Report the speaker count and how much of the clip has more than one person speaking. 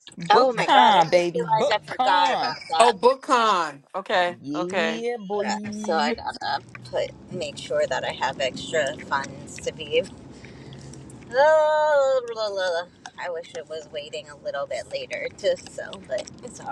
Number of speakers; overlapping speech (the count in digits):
3, about 22%